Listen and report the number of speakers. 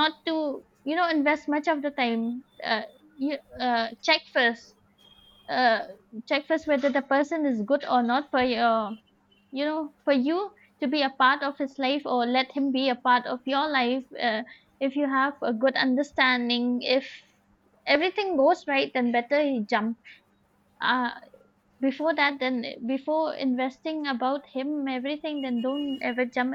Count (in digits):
1